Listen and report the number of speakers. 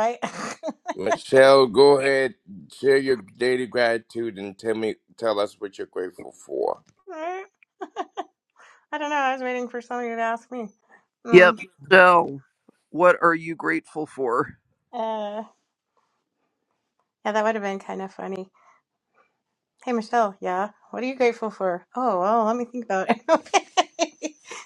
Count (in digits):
3